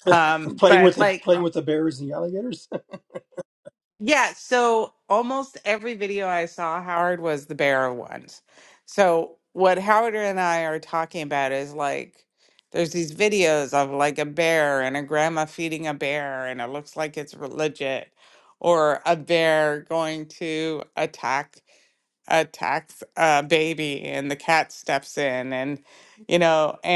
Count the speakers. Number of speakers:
two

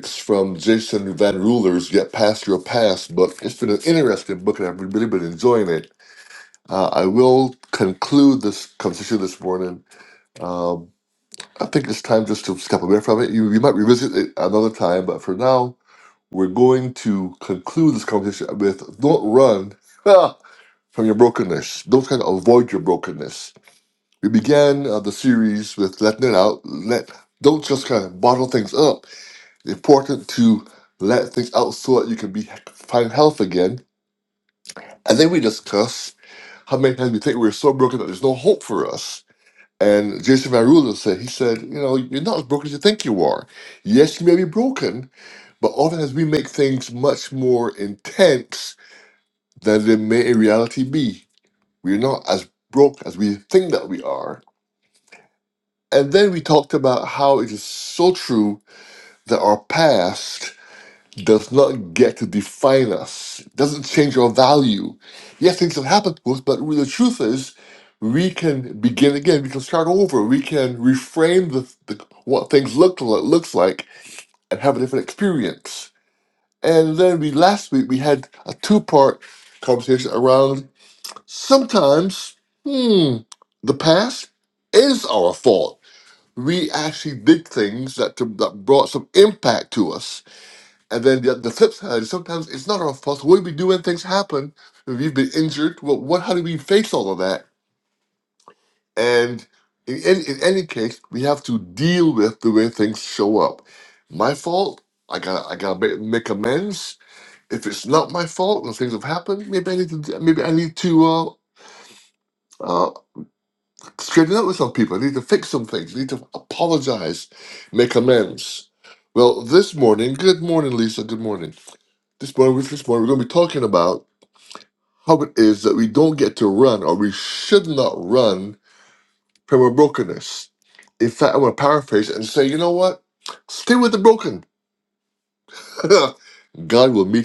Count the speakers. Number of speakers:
one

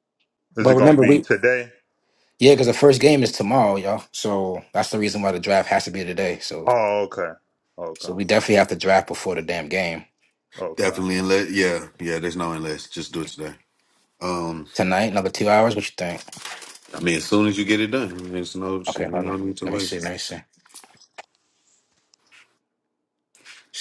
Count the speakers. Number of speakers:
three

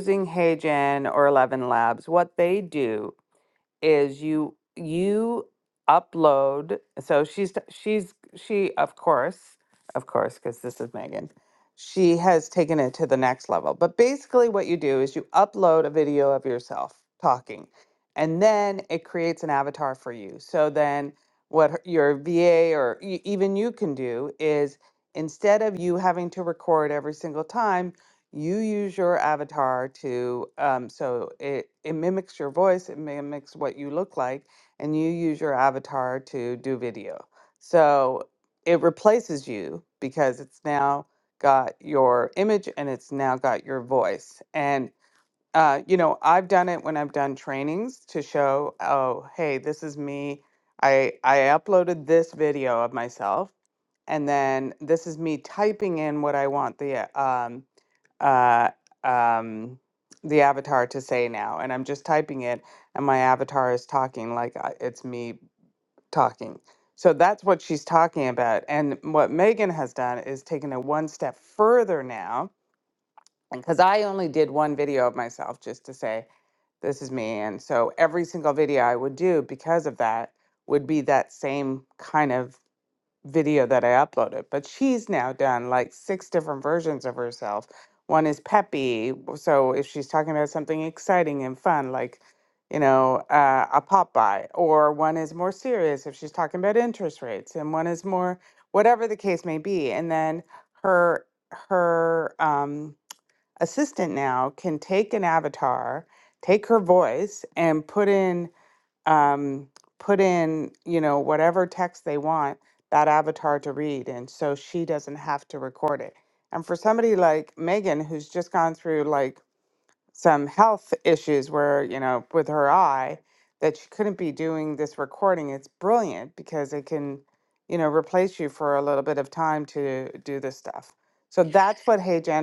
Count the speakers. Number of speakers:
one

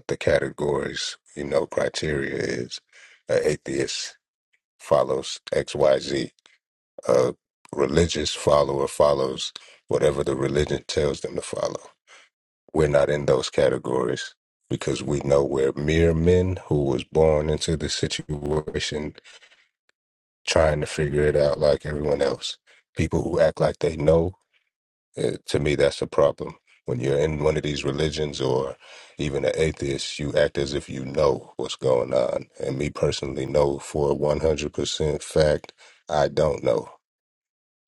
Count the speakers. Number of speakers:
one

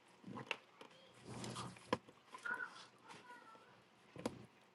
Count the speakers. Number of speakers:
zero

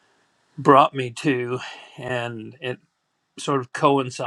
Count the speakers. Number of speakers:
one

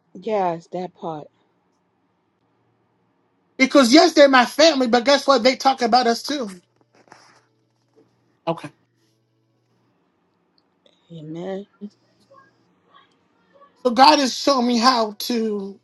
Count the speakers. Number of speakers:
two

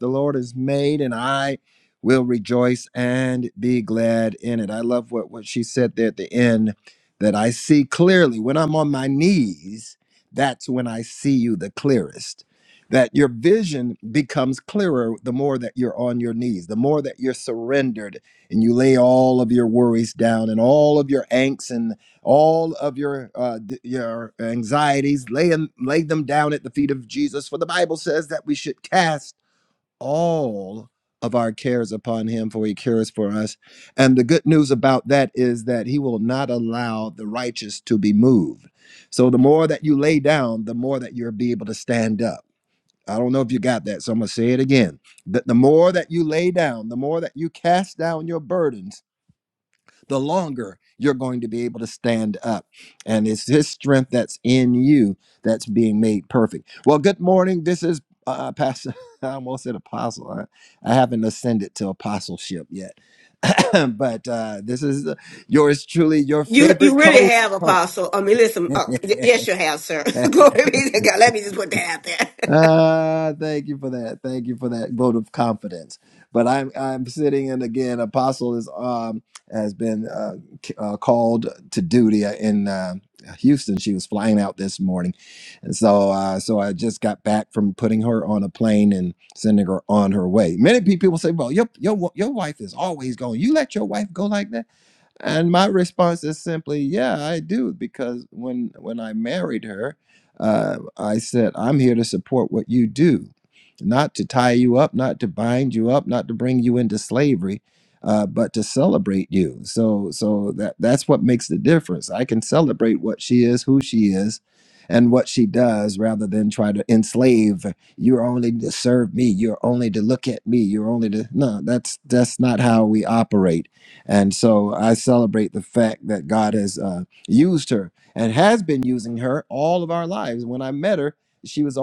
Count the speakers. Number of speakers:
two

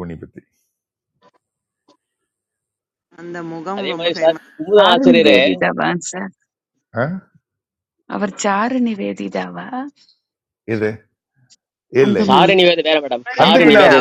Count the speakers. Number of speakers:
four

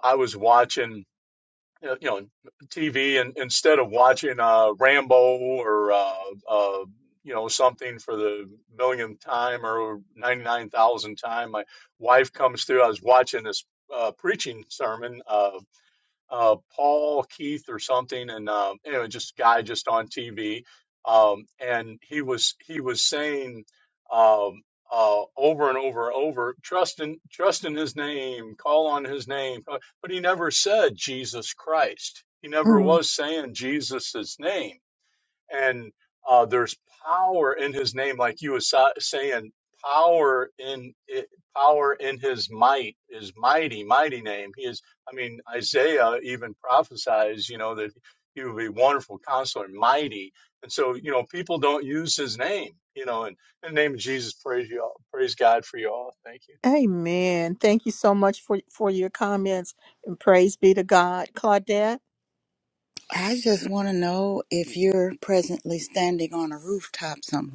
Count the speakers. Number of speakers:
three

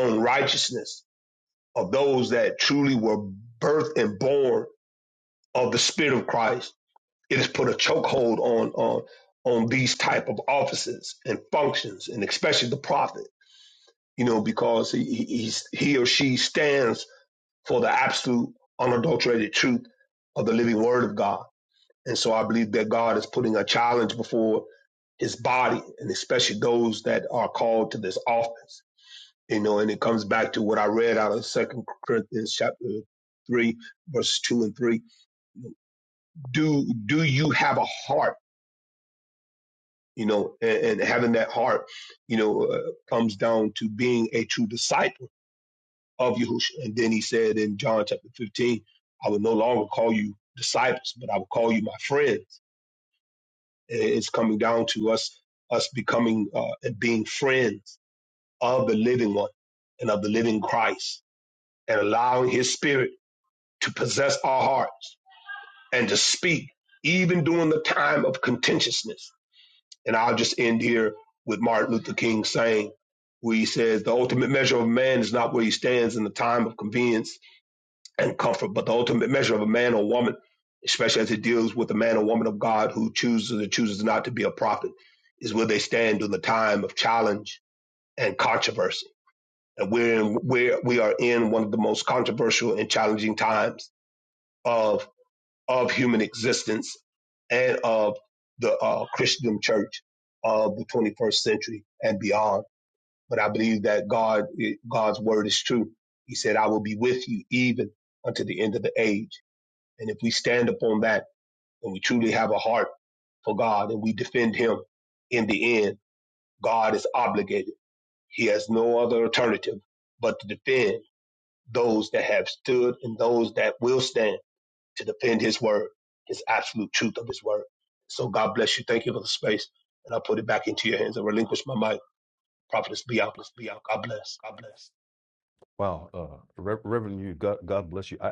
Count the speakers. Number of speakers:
two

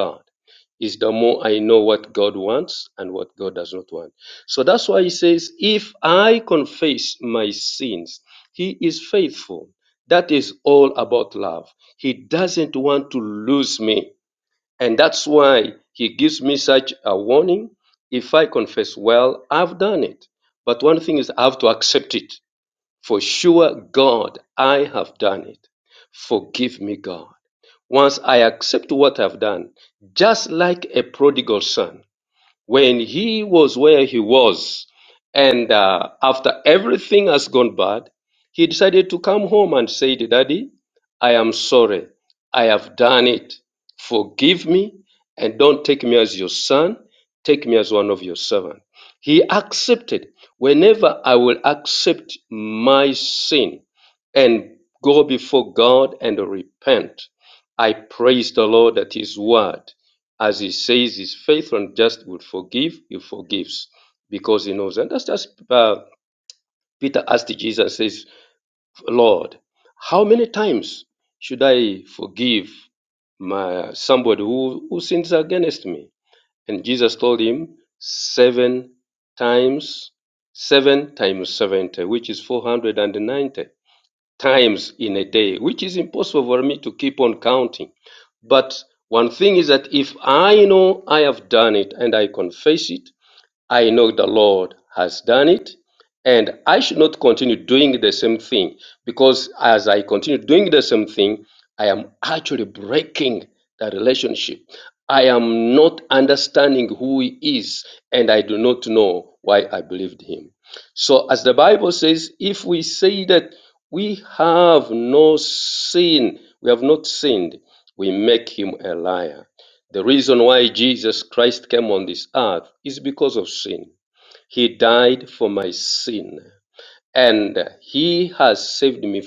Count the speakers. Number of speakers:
one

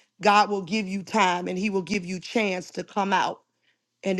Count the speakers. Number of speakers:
one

